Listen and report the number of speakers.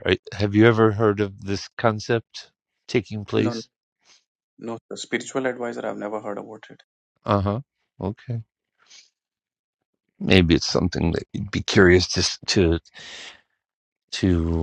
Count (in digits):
2